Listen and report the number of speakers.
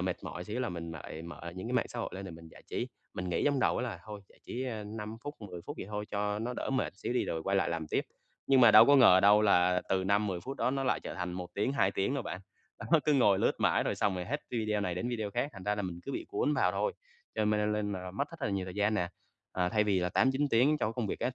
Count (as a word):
one